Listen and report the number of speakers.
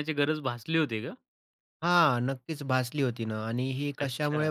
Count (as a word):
two